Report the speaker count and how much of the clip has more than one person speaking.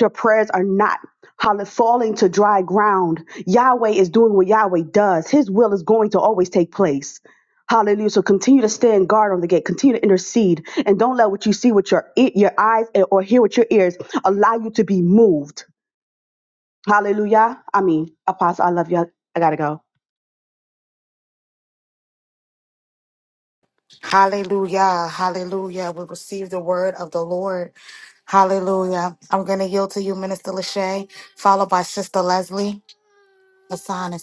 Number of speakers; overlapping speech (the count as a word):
two, no overlap